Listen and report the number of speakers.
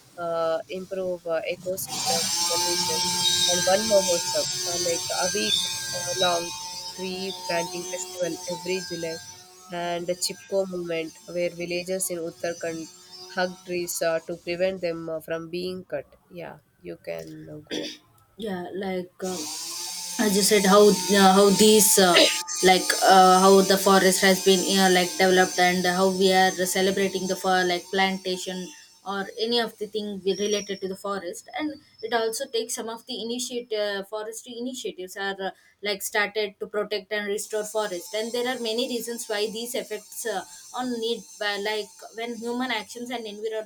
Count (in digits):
2